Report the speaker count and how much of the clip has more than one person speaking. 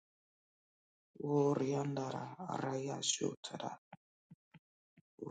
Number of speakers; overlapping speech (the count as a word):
one, no overlap